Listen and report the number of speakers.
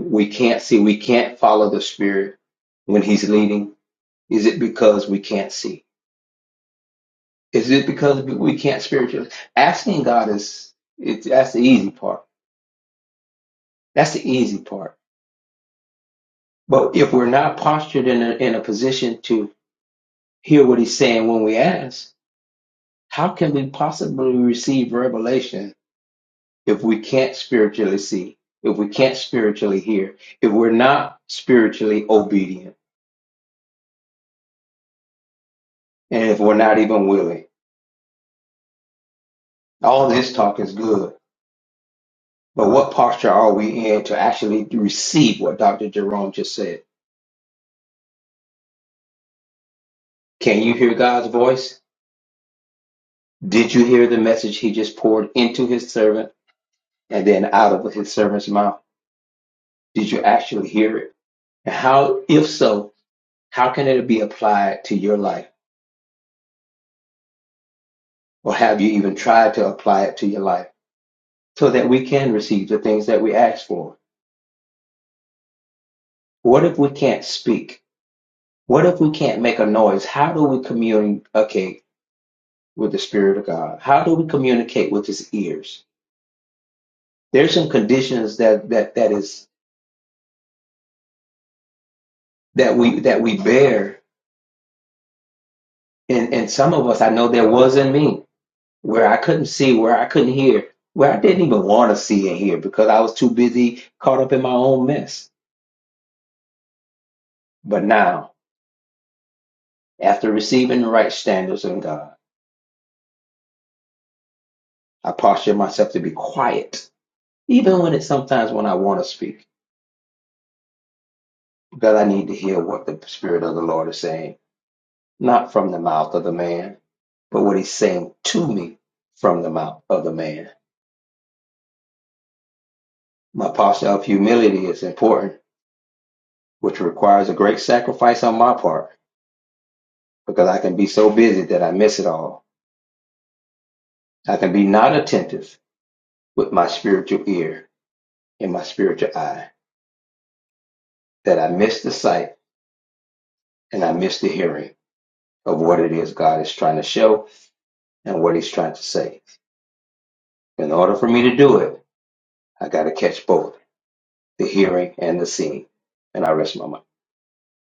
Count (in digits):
1